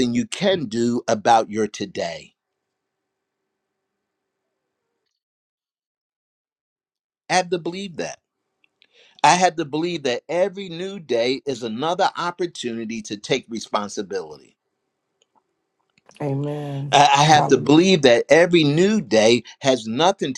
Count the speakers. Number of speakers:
2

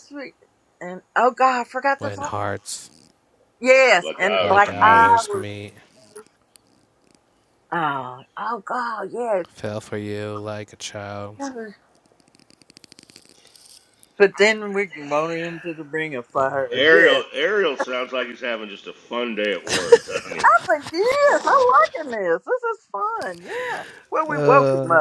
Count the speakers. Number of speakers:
3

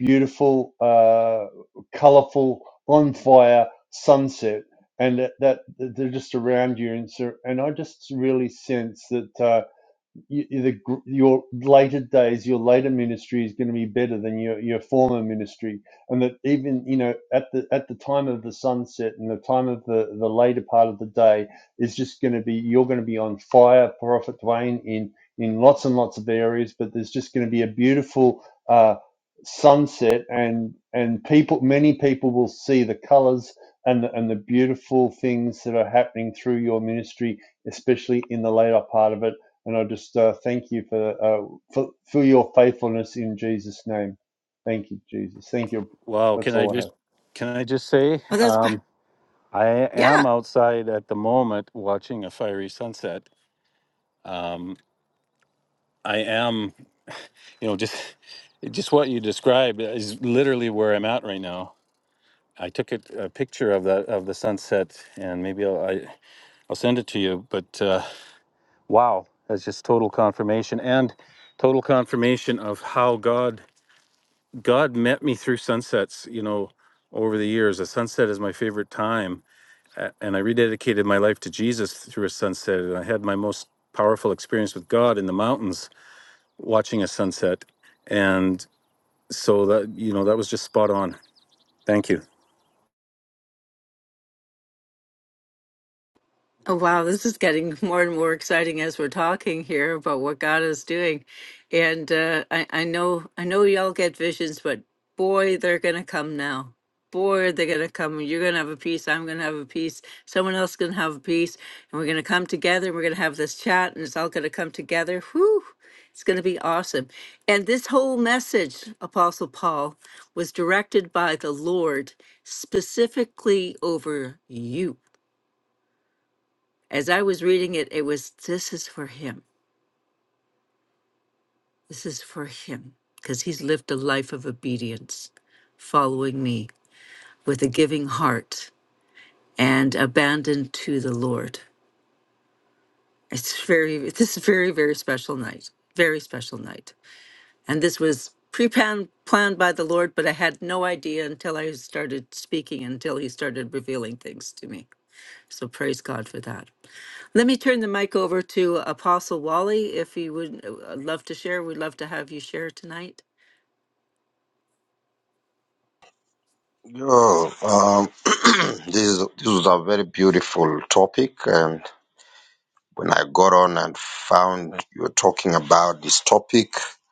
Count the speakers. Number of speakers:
4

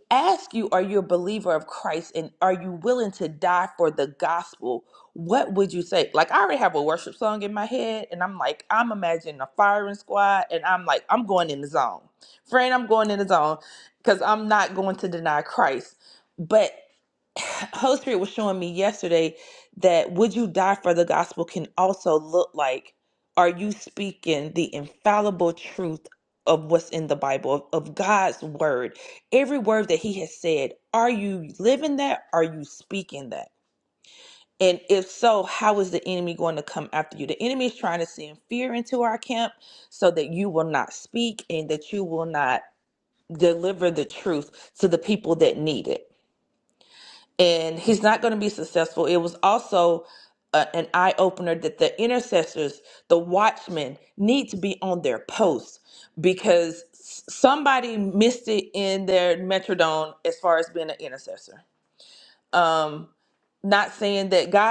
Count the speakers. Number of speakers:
1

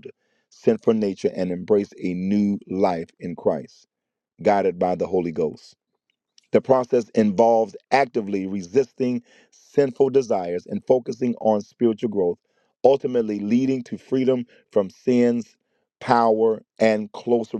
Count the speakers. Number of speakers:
1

